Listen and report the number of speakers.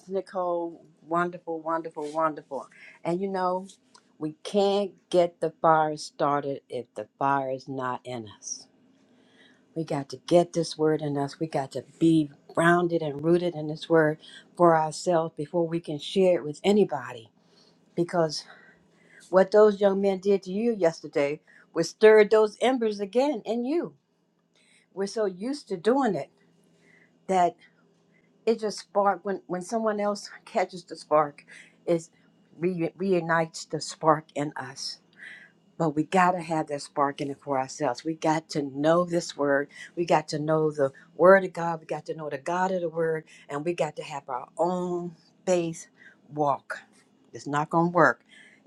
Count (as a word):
one